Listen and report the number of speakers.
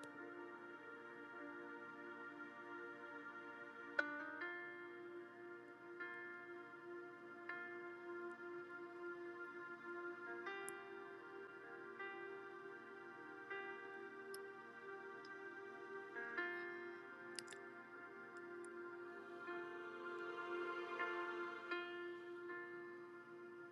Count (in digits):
0